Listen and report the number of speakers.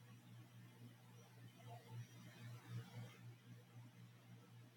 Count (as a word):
zero